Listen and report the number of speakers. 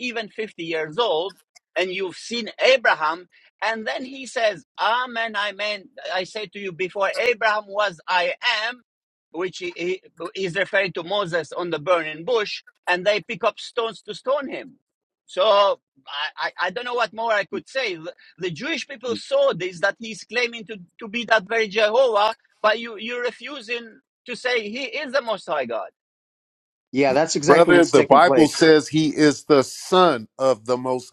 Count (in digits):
3